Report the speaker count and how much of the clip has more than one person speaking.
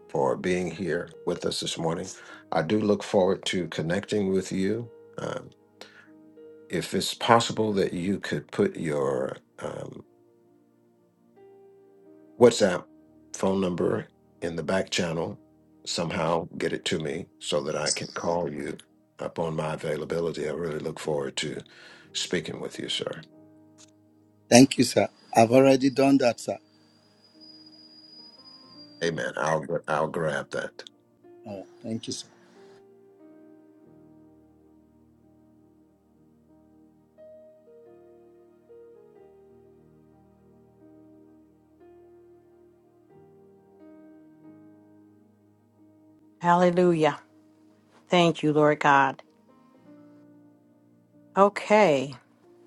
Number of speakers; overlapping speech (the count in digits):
3, no overlap